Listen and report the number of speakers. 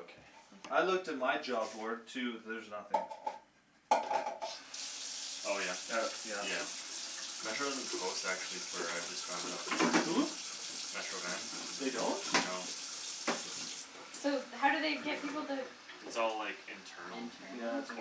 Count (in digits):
3